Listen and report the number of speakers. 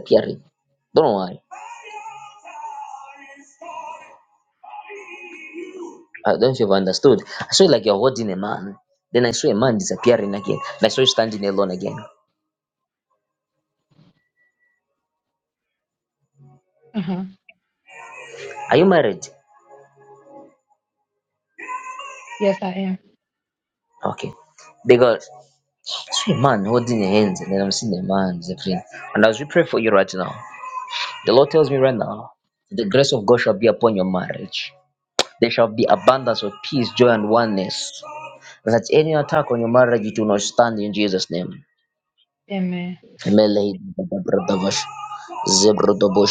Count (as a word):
two